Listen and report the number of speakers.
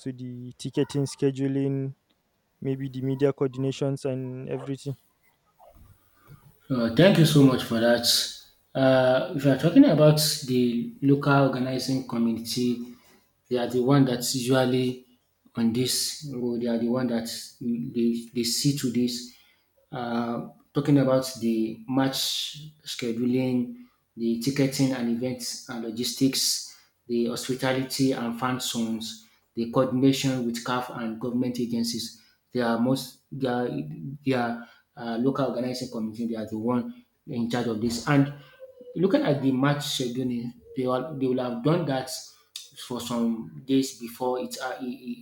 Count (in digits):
2